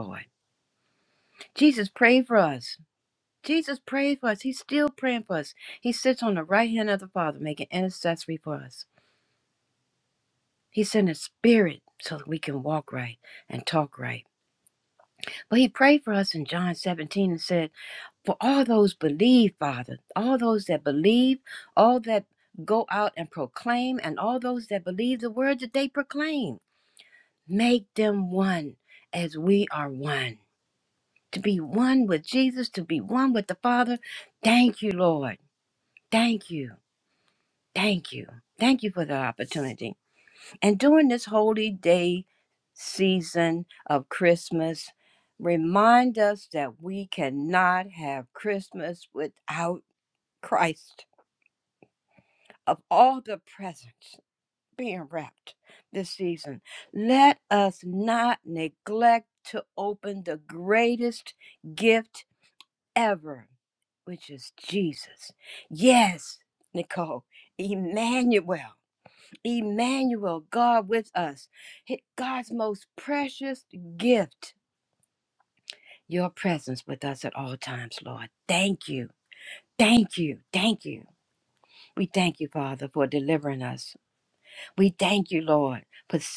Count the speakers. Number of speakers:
1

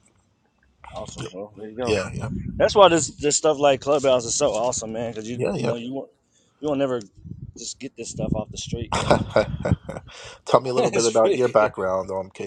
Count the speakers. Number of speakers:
2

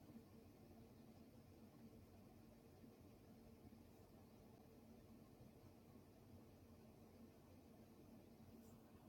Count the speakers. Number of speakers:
0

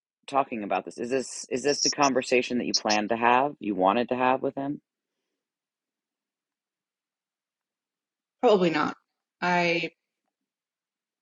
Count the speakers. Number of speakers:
2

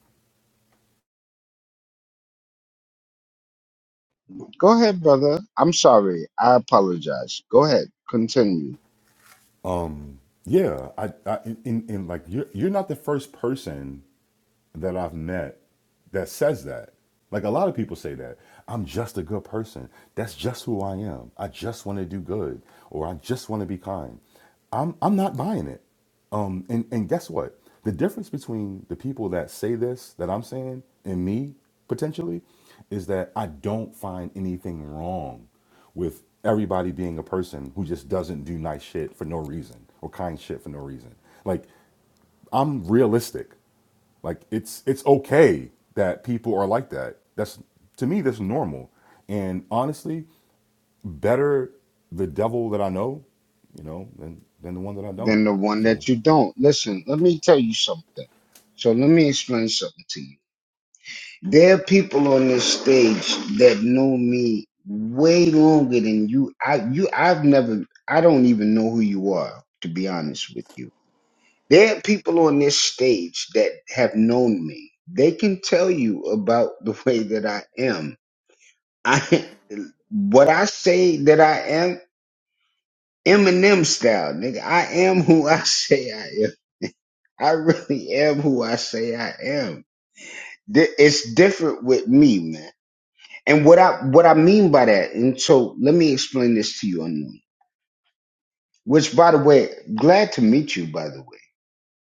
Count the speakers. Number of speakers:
2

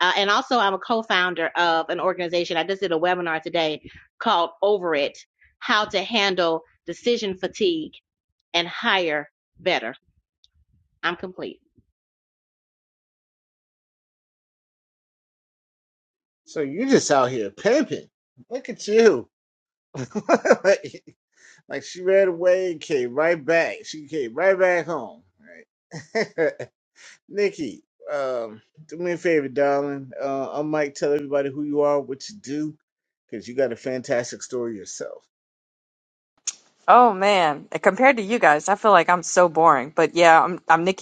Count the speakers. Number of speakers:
3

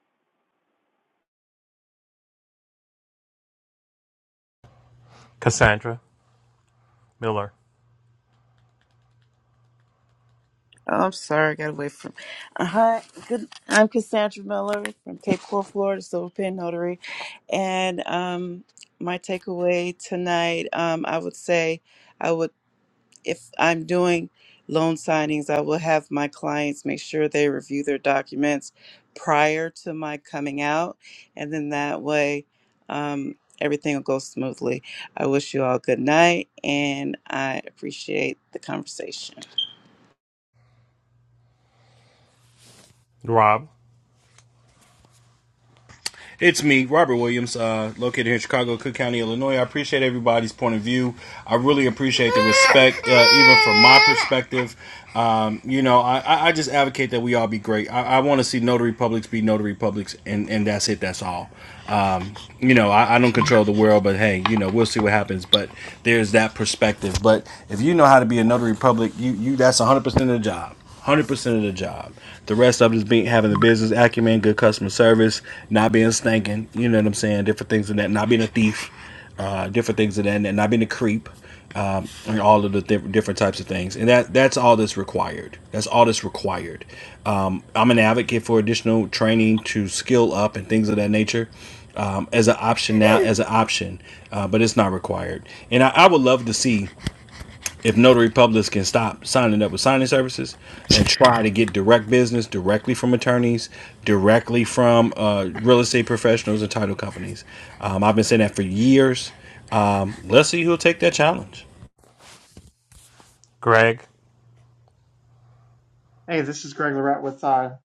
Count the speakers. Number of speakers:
4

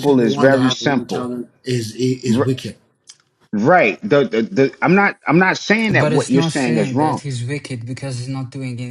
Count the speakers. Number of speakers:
3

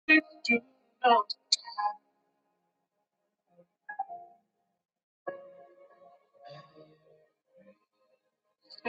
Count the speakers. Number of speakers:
0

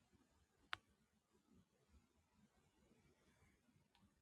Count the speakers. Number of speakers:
0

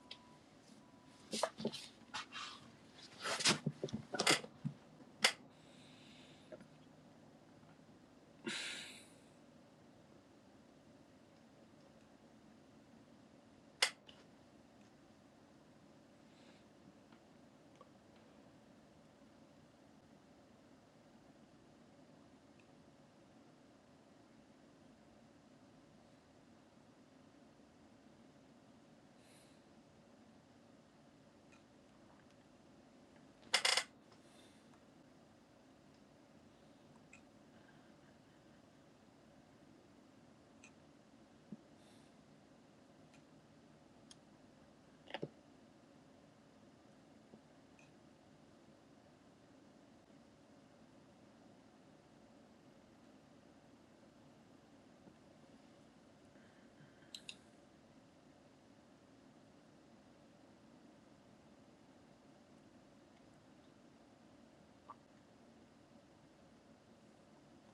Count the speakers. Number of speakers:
0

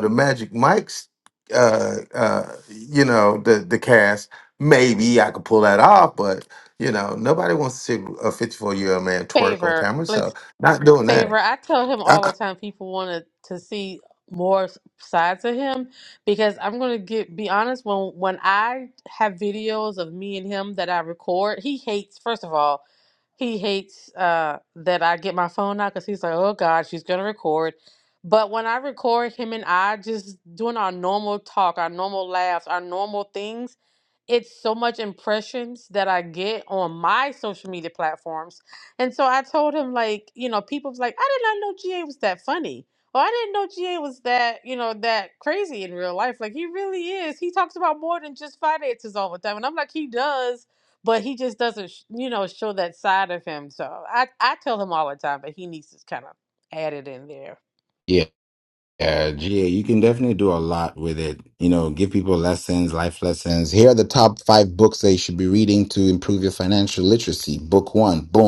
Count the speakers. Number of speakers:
3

